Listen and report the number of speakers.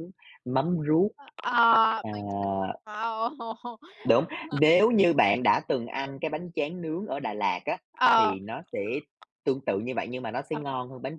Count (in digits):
2